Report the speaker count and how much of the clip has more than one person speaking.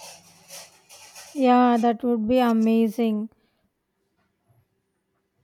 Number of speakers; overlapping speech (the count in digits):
1, no overlap